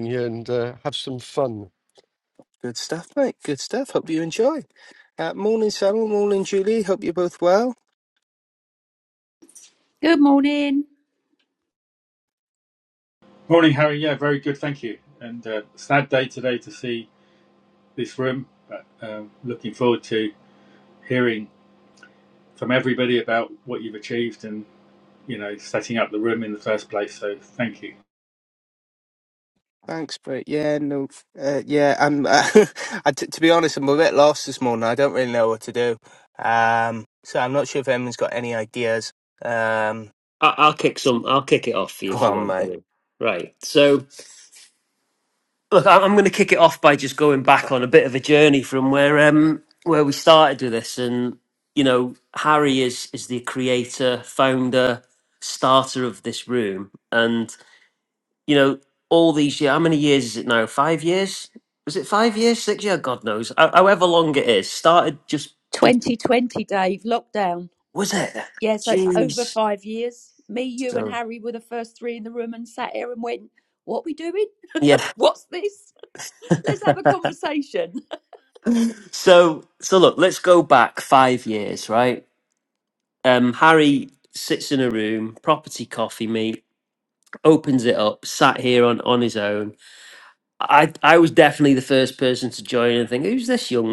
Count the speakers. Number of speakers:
five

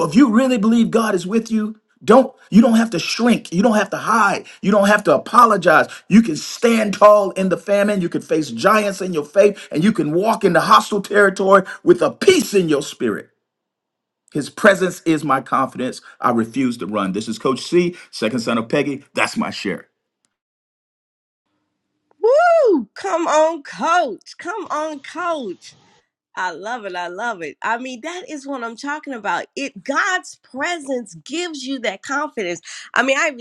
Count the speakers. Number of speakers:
two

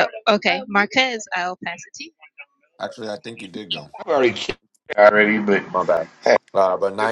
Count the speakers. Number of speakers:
three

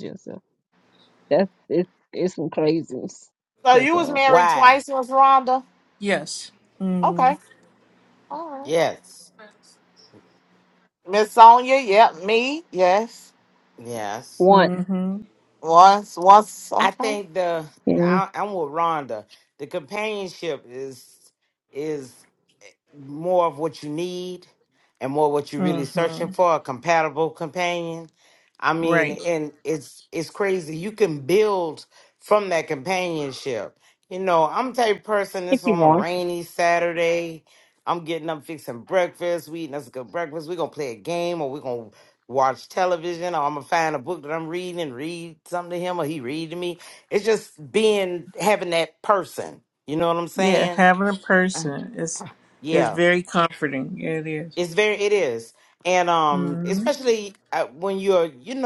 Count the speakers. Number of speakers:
four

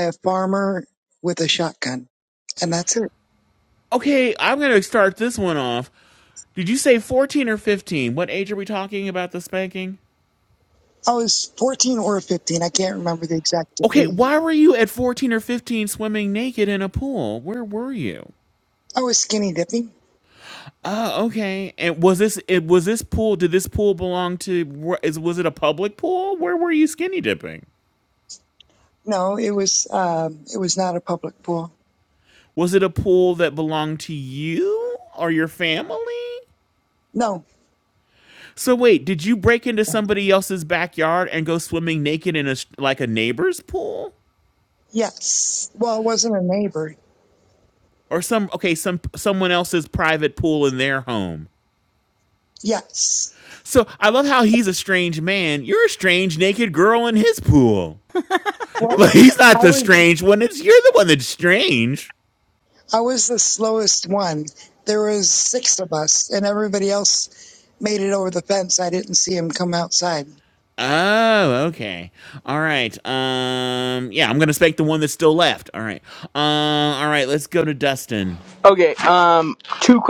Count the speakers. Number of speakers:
three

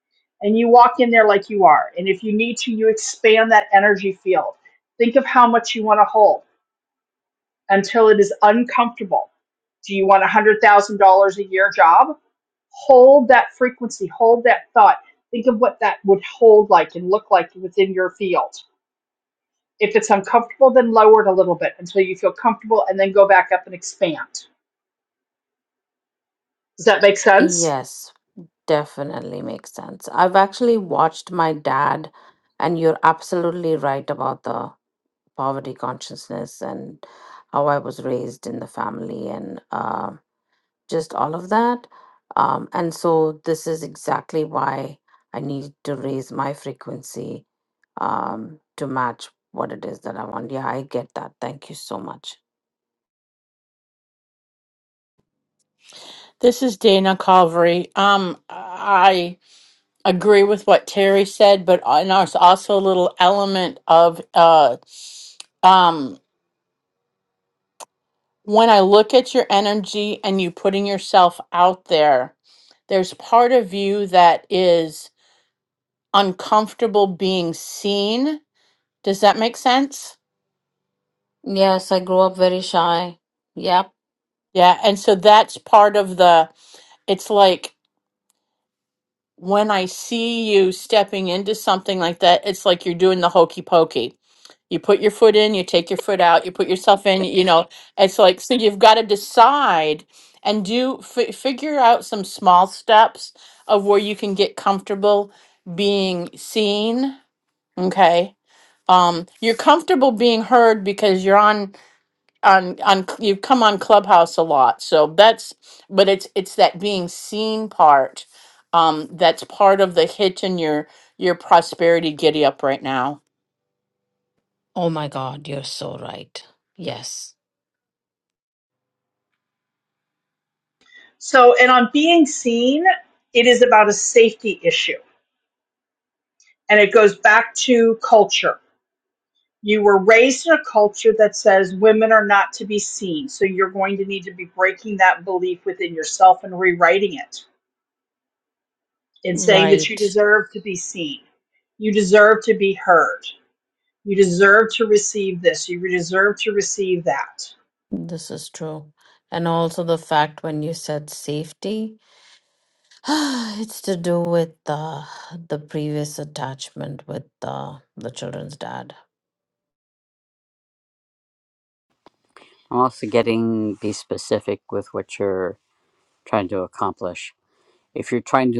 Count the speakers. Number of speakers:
four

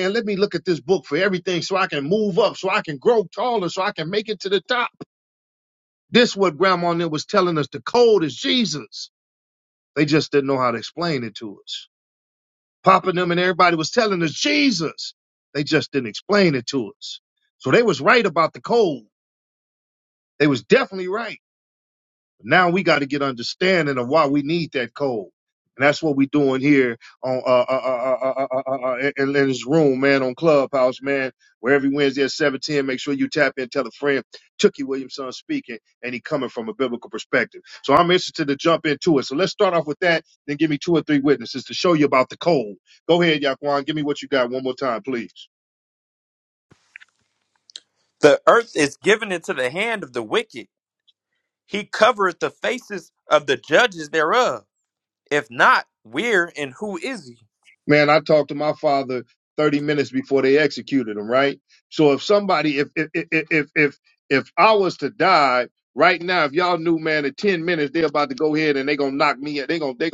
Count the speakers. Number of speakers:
two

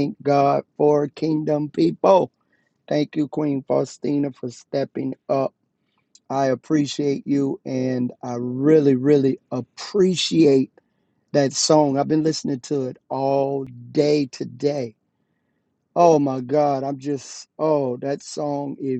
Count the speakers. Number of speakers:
one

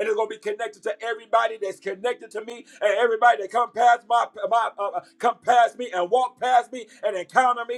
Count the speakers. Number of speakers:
one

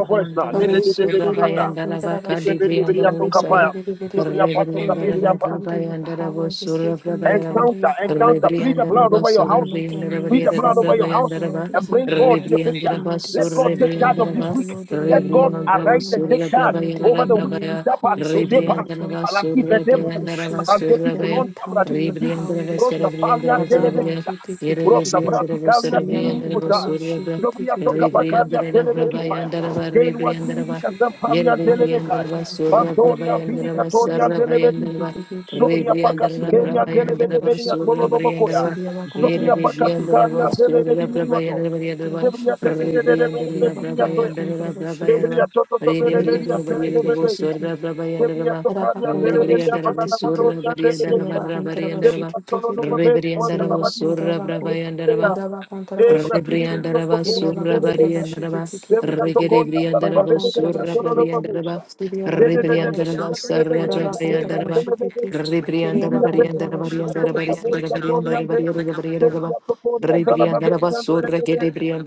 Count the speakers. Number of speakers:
three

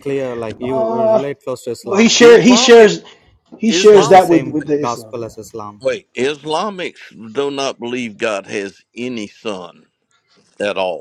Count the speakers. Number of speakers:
three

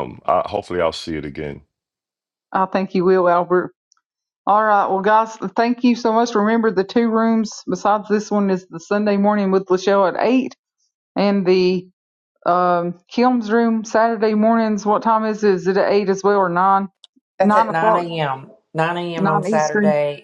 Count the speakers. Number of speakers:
three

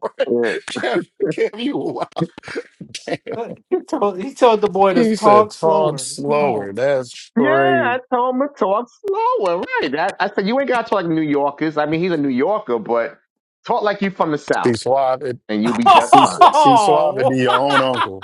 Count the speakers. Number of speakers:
three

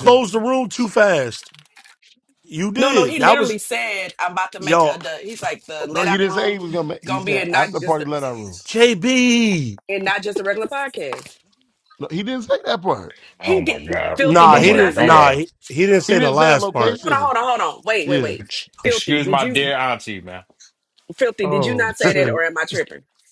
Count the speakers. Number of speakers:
four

